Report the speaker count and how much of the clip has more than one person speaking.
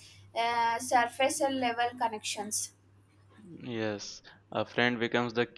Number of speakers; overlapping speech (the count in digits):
2, no overlap